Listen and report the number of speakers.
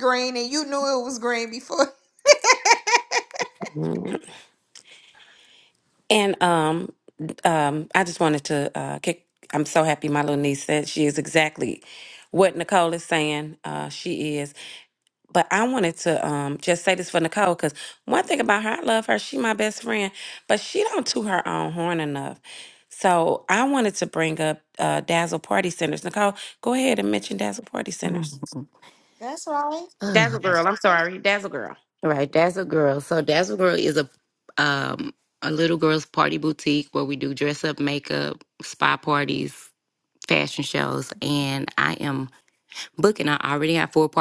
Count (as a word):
three